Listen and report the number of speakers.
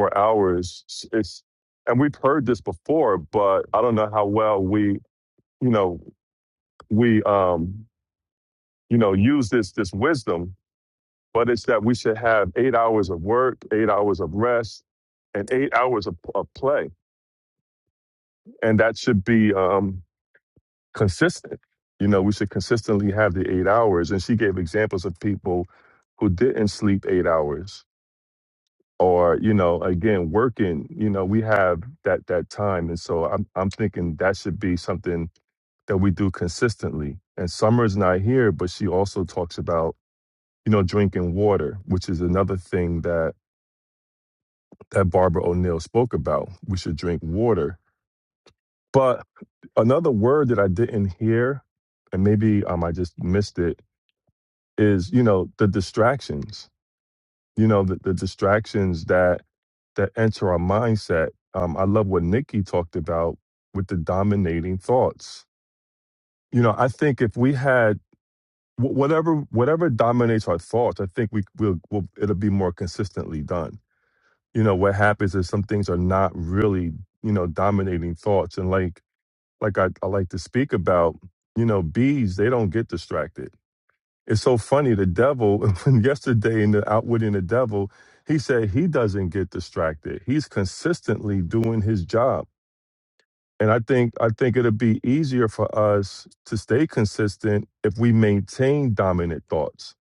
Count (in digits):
1